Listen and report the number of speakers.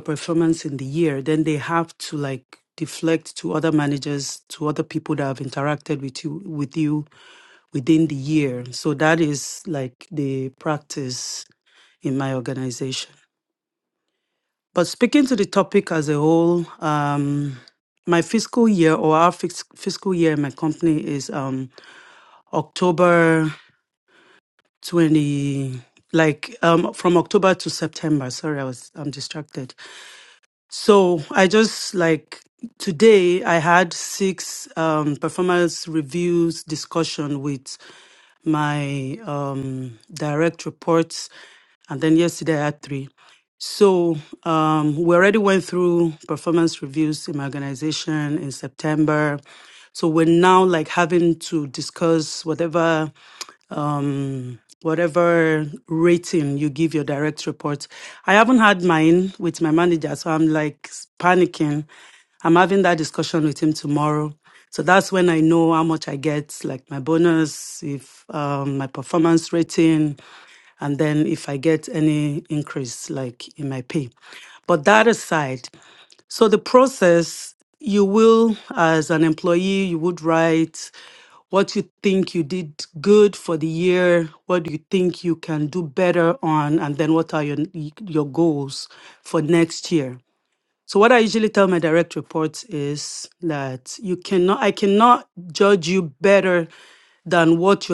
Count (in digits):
1